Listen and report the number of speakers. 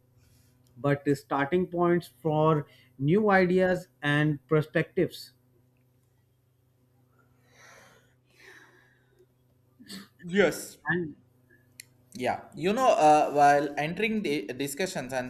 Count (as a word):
two